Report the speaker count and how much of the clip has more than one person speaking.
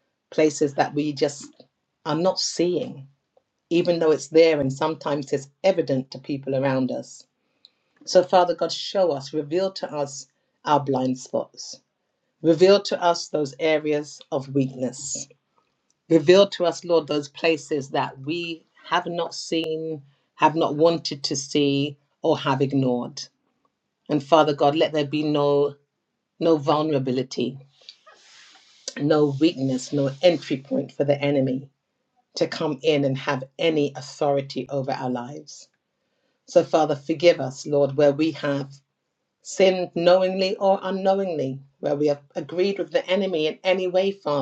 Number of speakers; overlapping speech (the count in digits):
1, no overlap